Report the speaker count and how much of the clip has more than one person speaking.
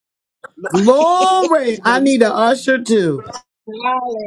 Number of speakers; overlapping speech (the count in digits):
2, about 20%